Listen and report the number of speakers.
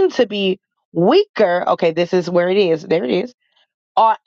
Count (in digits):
1